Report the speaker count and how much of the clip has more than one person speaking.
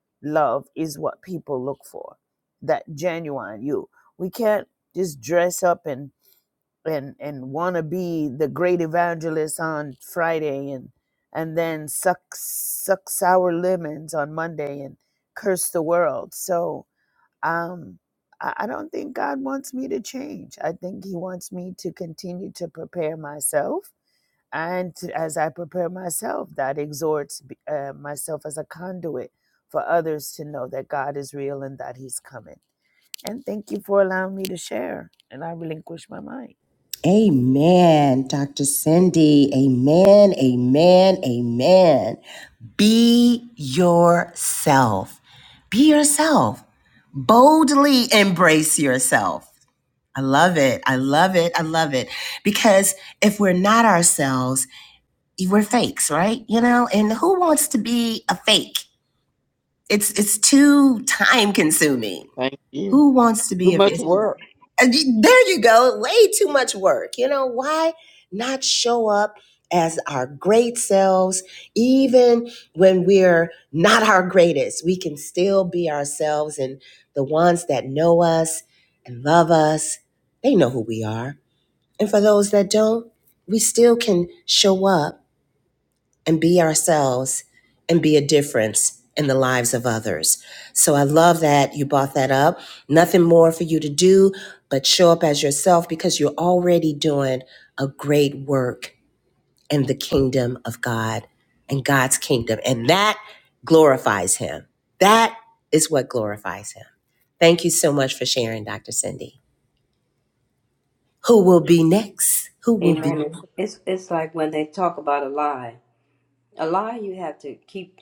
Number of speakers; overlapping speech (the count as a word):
four, about 1%